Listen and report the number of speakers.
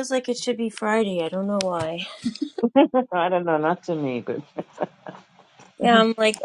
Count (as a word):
two